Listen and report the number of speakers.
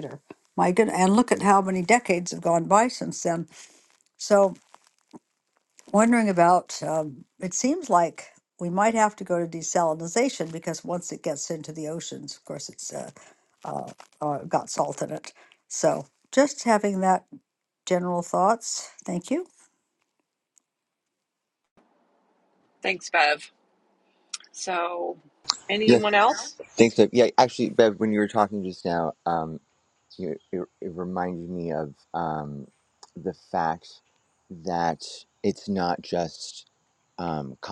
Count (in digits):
3